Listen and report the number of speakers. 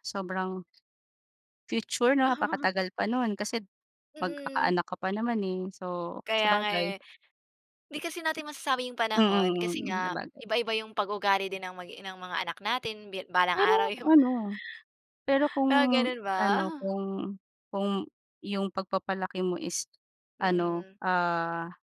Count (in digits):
2